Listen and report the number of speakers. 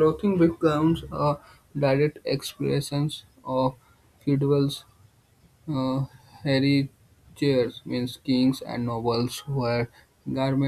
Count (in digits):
1